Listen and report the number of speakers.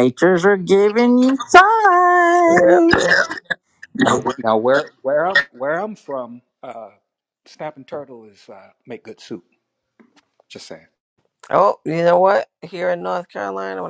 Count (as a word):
three